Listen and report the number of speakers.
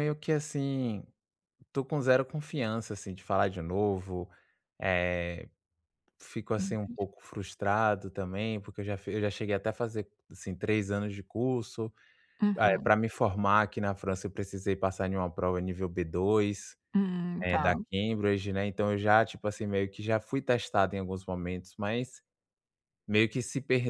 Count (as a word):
two